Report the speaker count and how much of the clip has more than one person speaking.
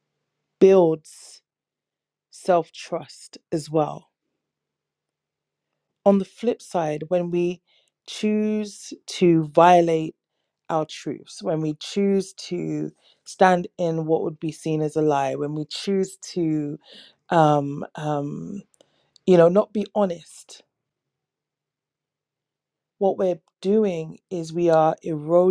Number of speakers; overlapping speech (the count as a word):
one, no overlap